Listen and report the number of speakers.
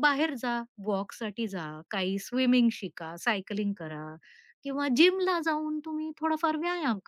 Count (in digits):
1